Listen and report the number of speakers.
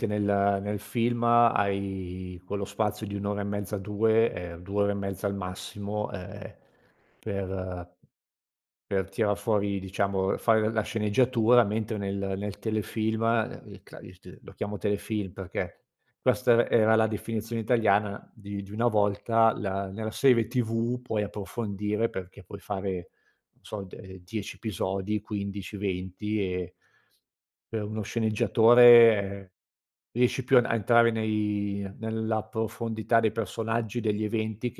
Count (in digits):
1